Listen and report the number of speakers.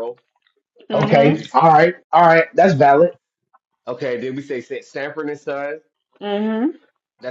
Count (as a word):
three